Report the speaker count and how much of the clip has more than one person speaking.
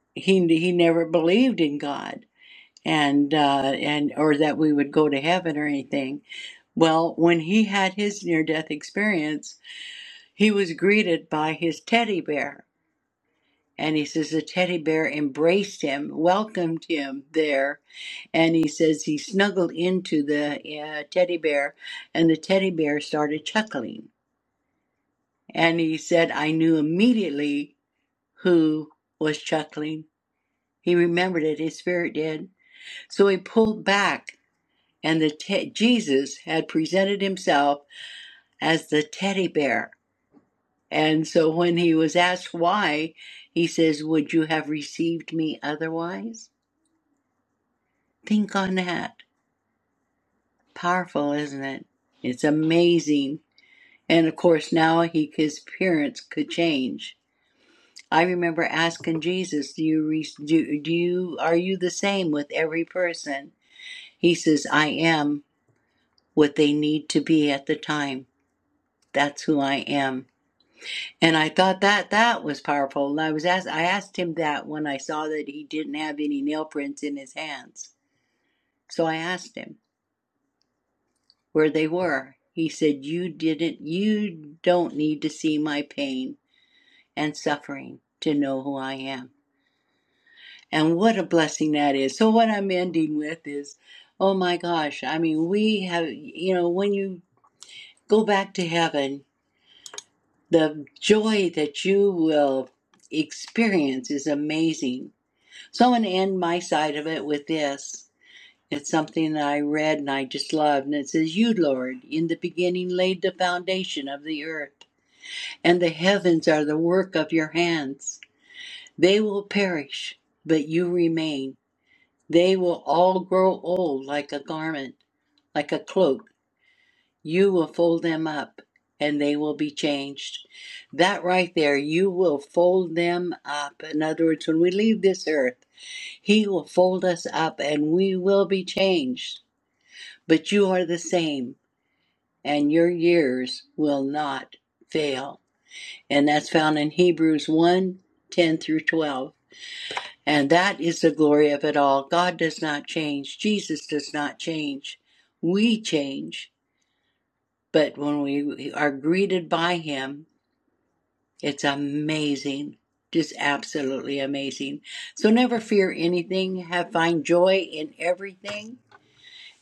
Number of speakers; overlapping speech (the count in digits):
1, no overlap